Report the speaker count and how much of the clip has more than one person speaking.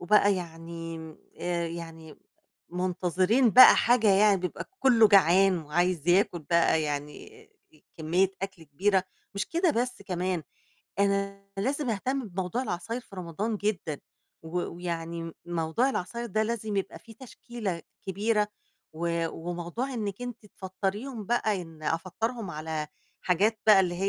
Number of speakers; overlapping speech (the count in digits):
1, no overlap